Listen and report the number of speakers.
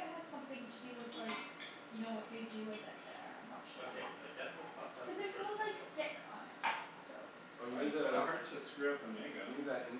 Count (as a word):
four